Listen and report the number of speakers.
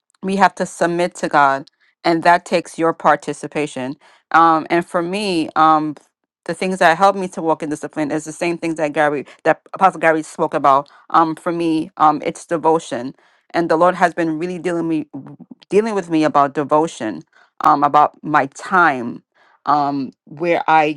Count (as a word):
one